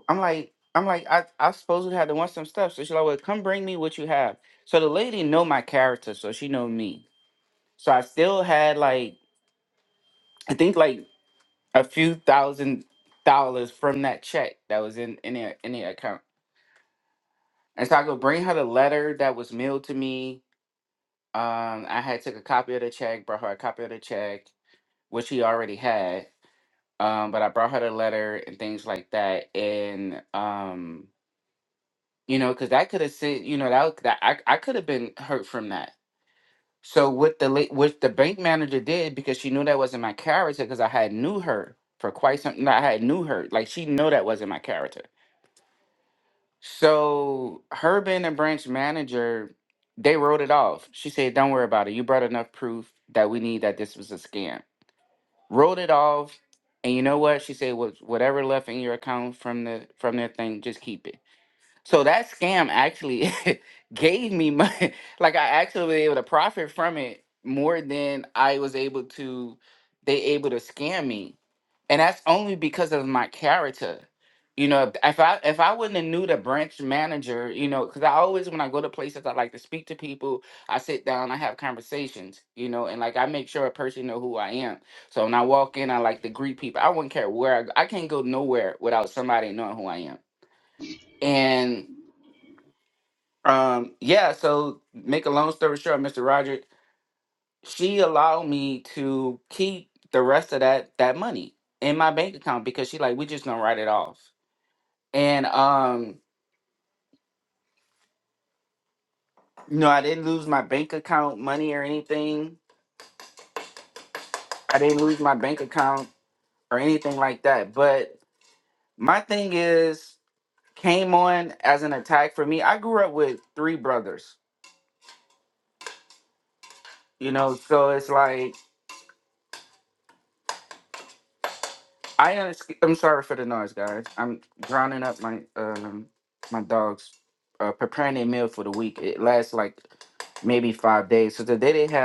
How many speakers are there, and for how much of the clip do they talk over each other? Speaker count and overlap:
one, no overlap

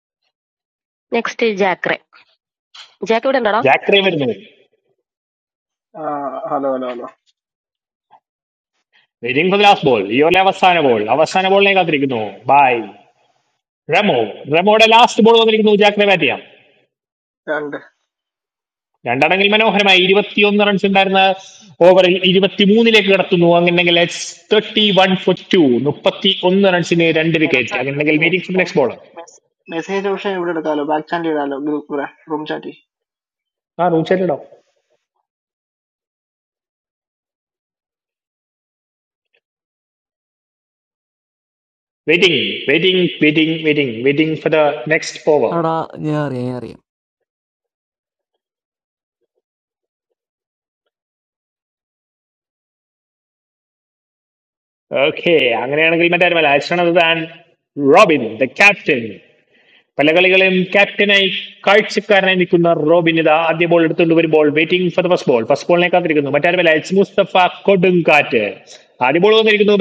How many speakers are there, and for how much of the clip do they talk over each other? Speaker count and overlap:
four, about 1%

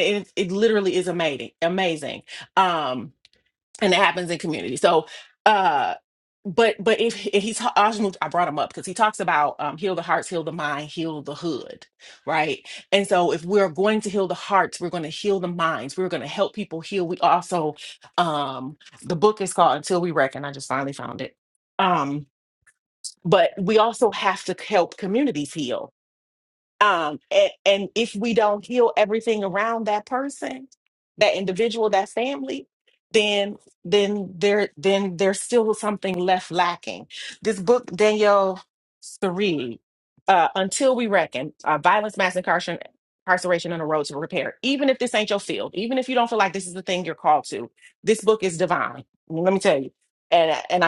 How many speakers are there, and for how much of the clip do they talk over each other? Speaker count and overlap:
one, no overlap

